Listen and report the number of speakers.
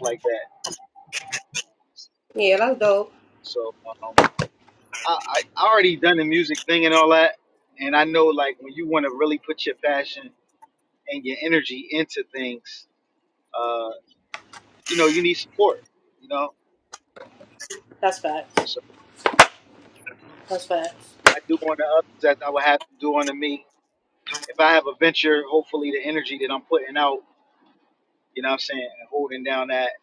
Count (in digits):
2